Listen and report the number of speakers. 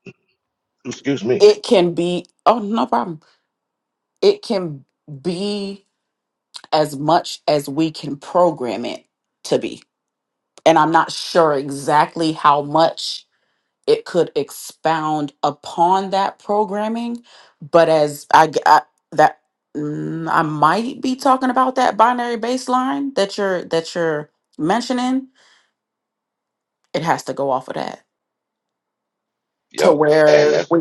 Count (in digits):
2